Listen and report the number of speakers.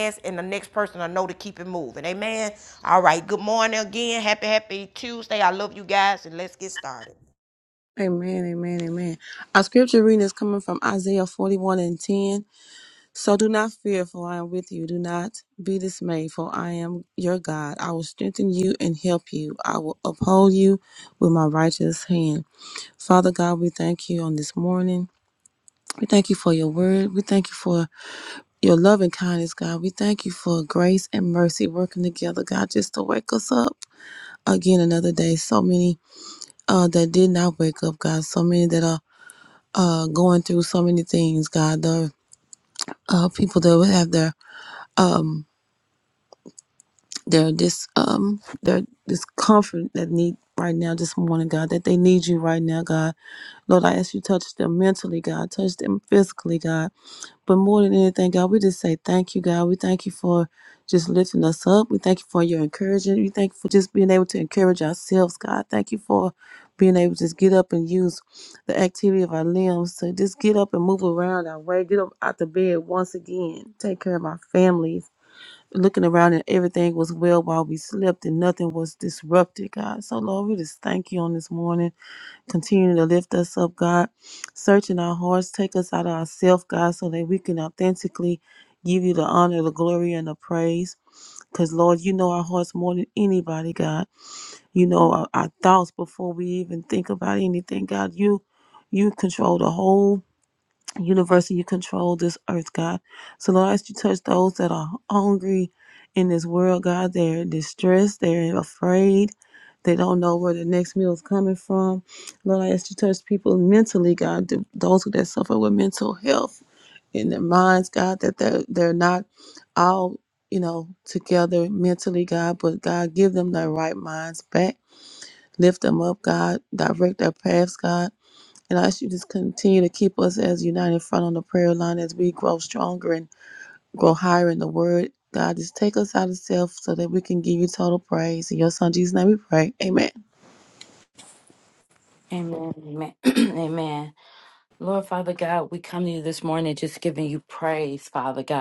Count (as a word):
three